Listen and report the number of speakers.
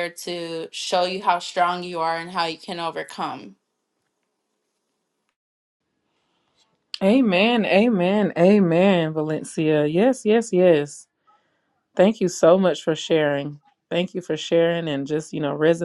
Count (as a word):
two